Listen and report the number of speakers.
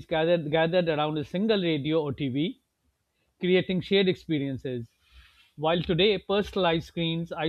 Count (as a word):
one